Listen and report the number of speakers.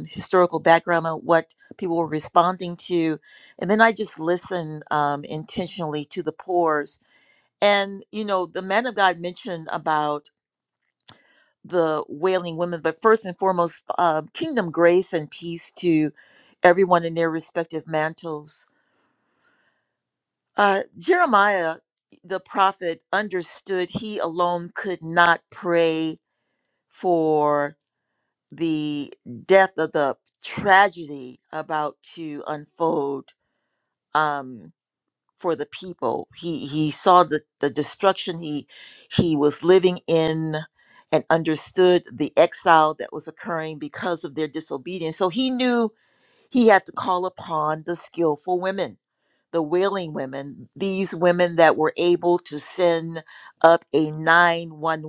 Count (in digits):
1